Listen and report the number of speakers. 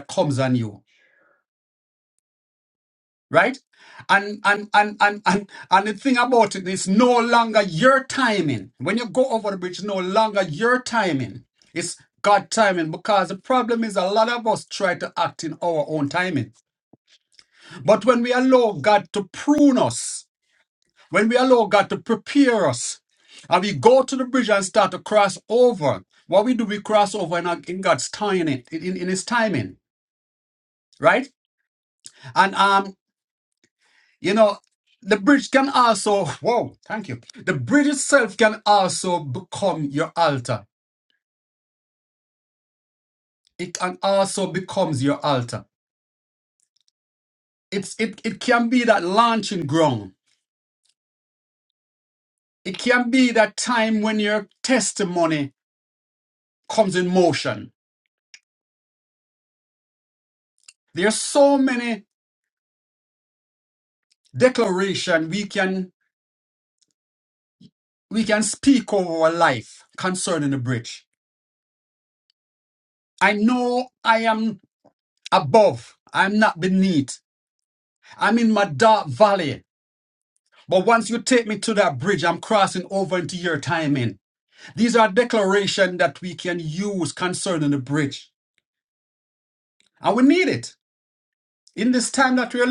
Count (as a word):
one